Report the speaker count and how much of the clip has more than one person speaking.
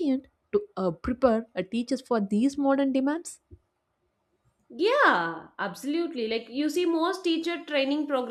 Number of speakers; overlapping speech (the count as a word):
two, no overlap